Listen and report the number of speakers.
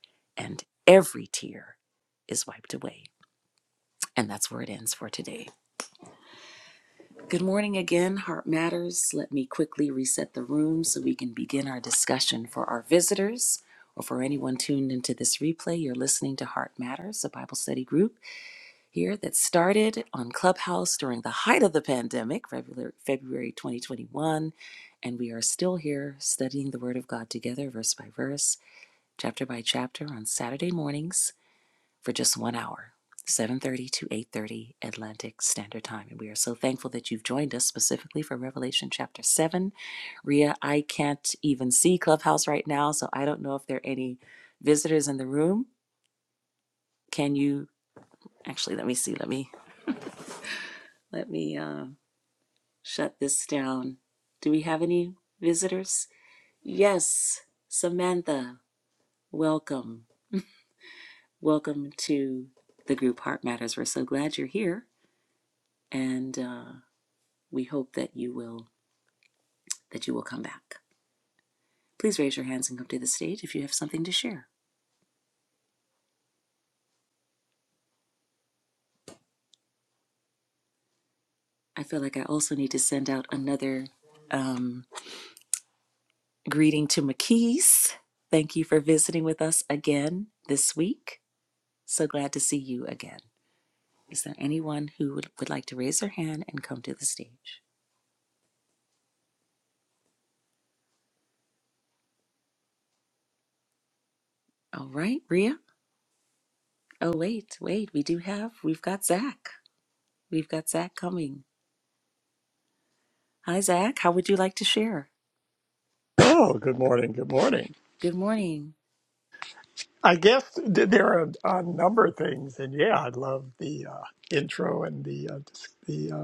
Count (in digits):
2